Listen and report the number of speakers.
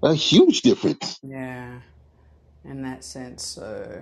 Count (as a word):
two